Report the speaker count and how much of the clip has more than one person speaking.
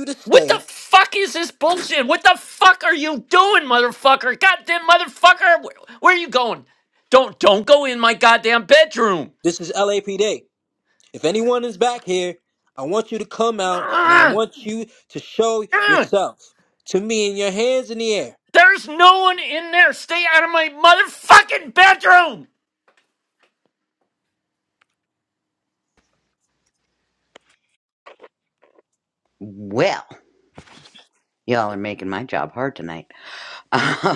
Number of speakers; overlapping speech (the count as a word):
three, about 4%